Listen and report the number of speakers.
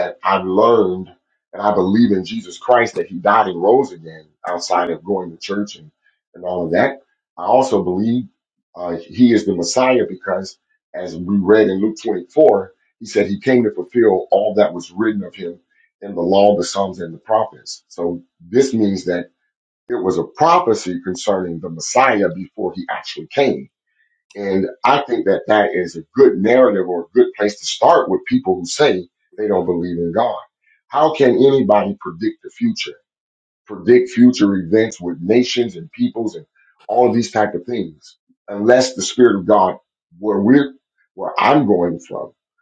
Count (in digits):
1